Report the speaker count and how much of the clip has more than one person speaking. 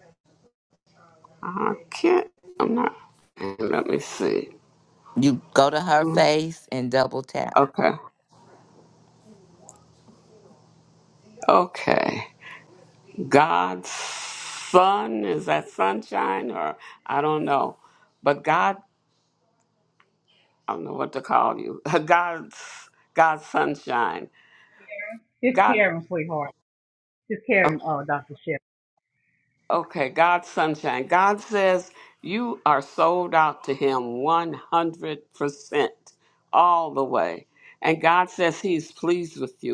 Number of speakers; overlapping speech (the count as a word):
three, about 1%